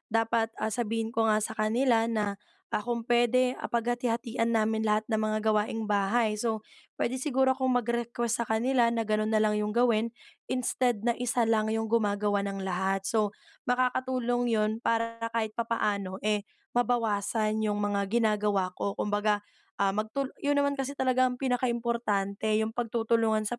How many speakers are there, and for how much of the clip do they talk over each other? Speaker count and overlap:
one, no overlap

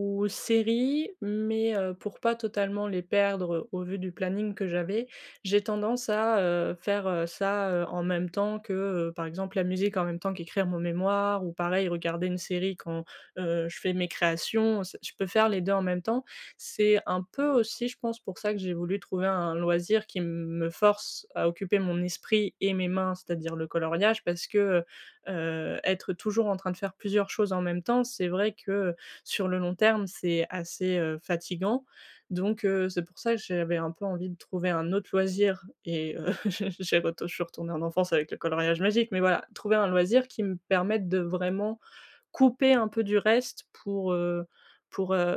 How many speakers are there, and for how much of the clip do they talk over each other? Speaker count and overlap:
one, no overlap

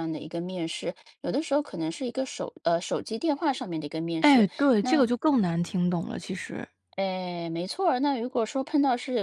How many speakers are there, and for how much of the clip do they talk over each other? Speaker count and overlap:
two, about 6%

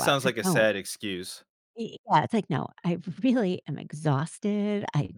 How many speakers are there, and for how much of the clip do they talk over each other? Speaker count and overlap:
two, about 13%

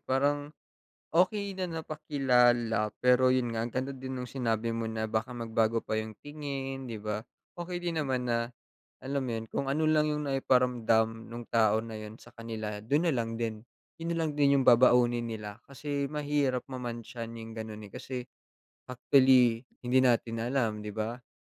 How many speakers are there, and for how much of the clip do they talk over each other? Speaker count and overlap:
one, no overlap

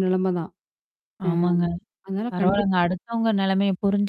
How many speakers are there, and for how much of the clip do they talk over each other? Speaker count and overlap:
two, about 14%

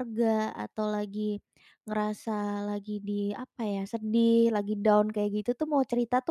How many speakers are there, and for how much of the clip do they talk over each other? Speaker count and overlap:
one, no overlap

